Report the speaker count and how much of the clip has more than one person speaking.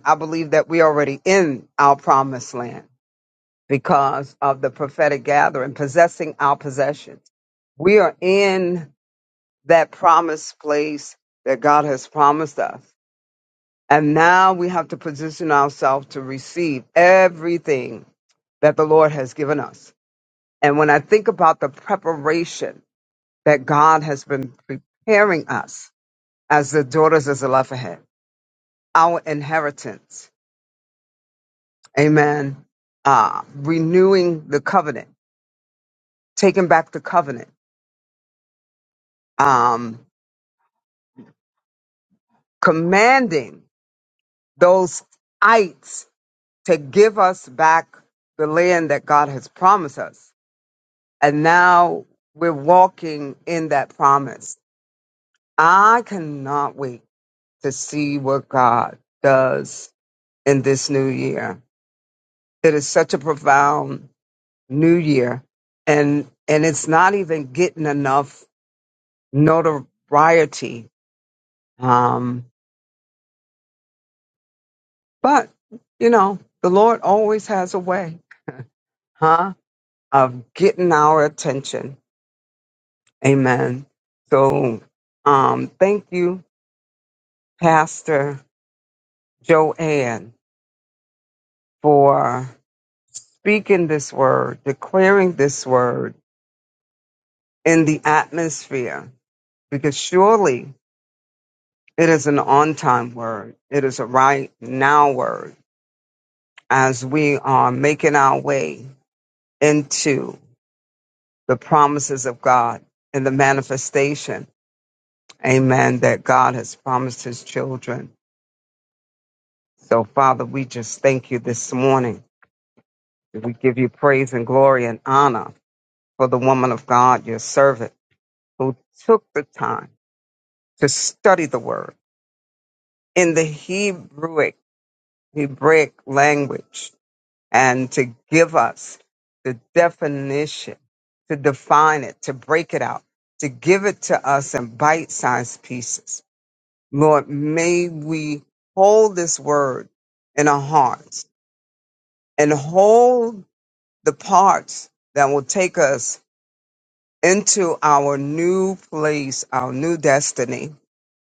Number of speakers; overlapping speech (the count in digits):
1, no overlap